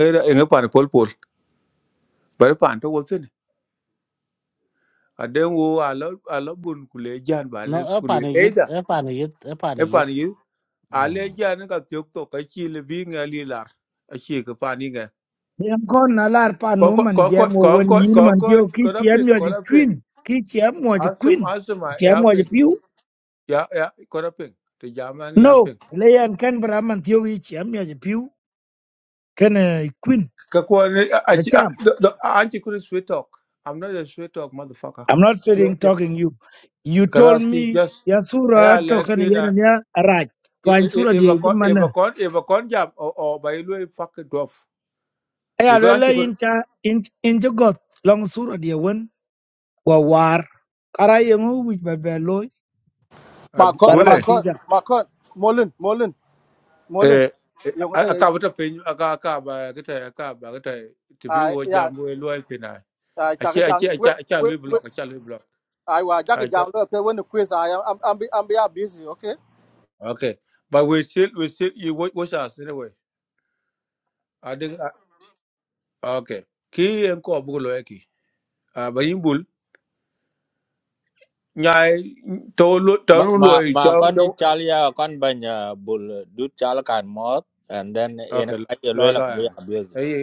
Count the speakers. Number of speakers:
five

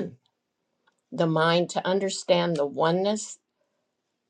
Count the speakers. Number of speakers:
one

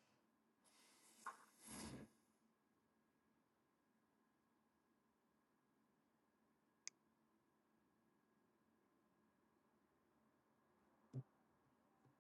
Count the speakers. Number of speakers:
zero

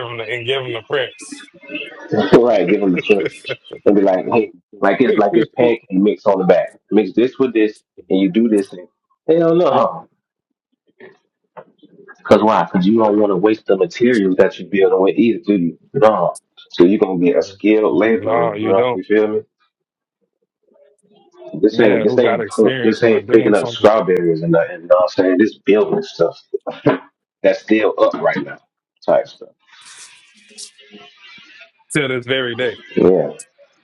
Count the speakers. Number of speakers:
two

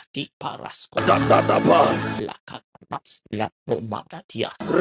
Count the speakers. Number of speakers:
two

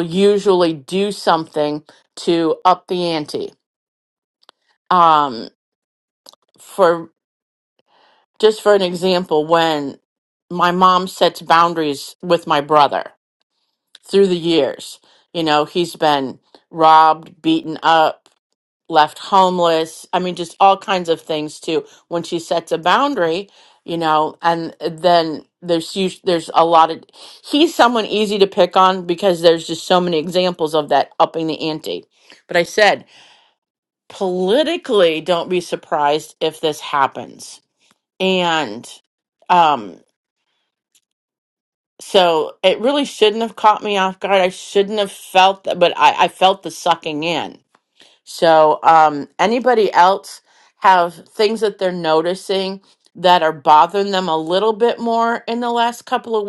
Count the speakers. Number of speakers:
one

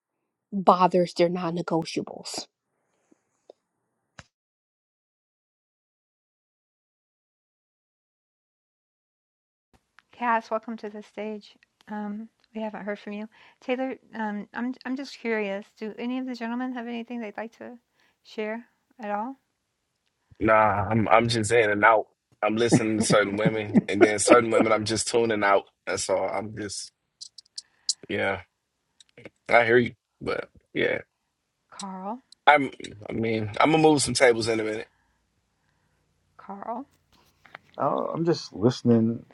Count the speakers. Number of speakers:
four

